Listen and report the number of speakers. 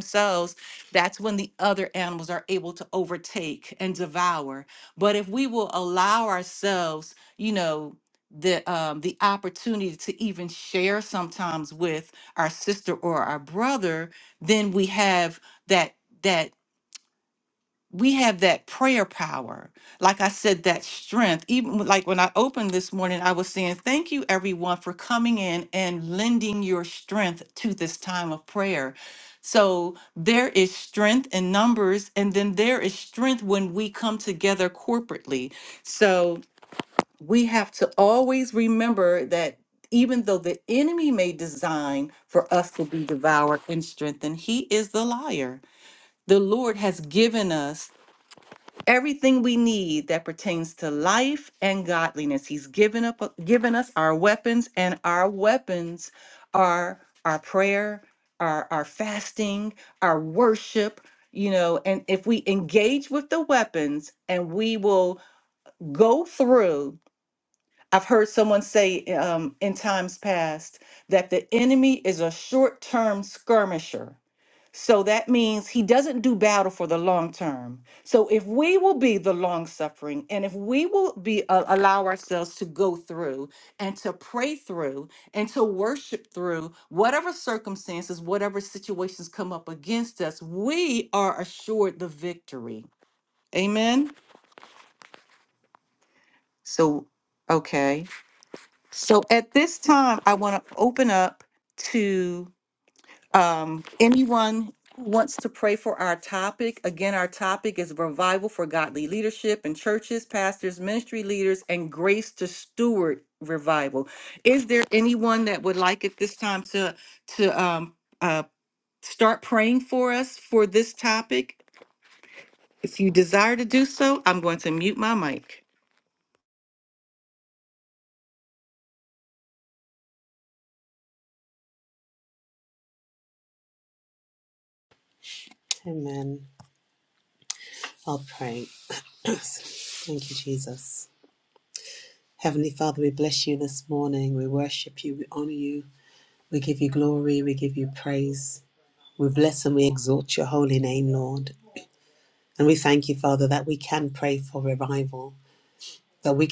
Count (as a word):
two